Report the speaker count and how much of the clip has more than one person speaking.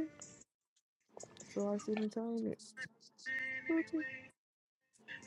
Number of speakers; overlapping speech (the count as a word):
one, no overlap